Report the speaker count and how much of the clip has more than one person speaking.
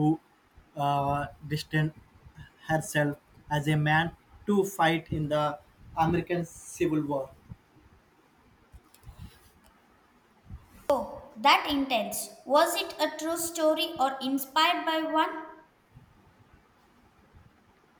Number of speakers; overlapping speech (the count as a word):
two, no overlap